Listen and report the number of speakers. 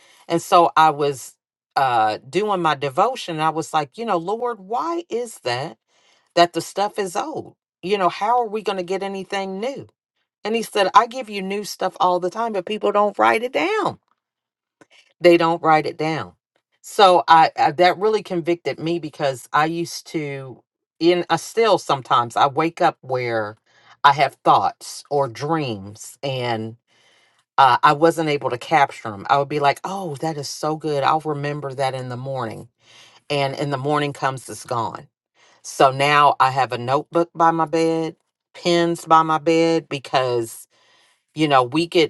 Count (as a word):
one